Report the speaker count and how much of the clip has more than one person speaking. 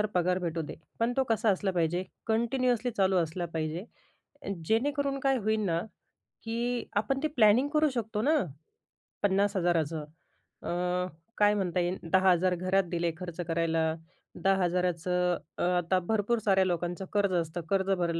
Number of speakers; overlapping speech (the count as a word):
one, no overlap